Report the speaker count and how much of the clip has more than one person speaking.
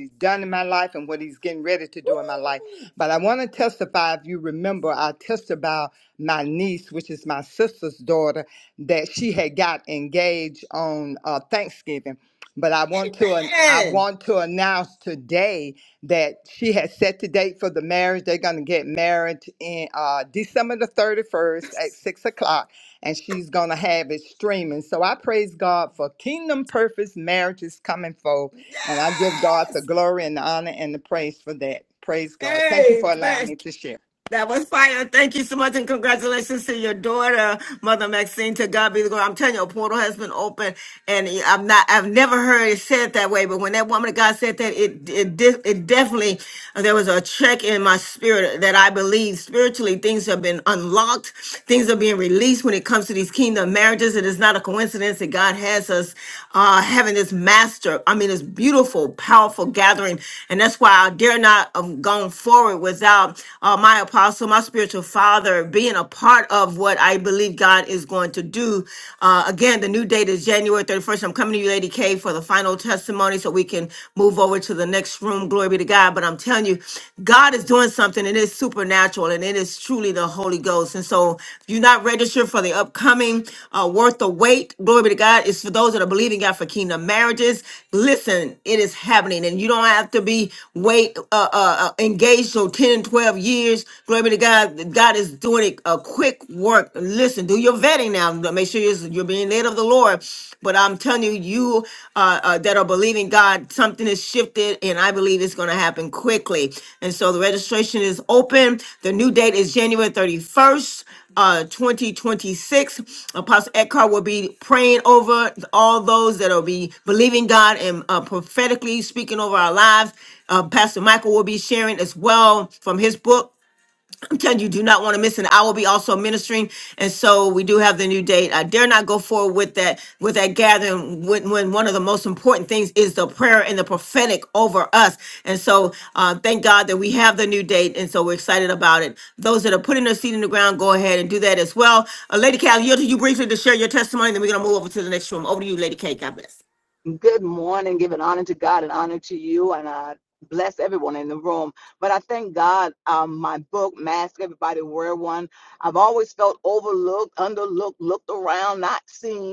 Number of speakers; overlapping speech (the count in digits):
3, about 1%